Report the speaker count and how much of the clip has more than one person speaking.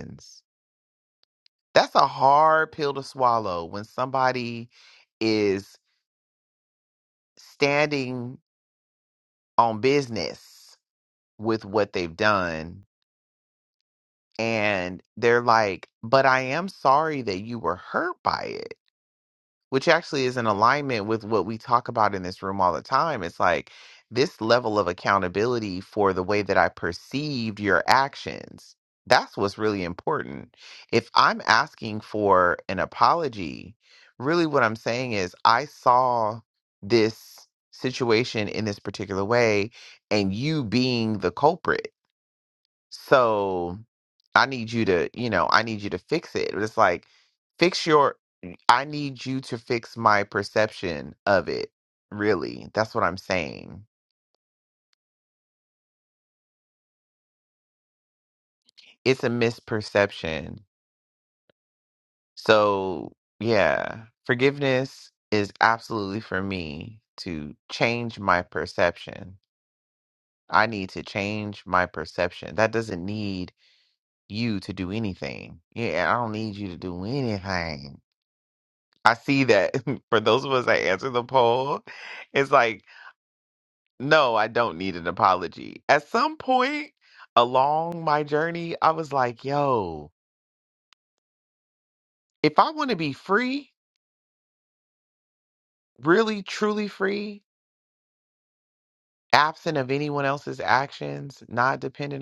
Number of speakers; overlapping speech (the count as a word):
one, no overlap